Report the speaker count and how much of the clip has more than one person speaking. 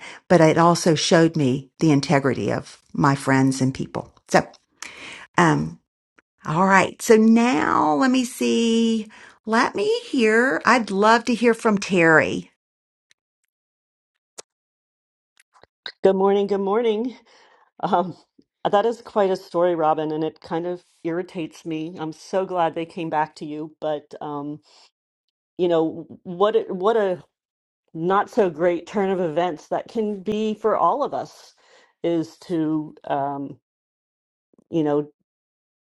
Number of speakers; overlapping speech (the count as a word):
two, no overlap